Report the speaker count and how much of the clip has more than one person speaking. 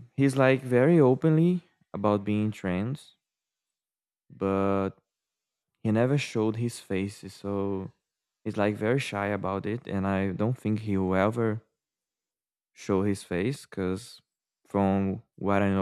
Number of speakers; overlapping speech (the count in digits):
1, no overlap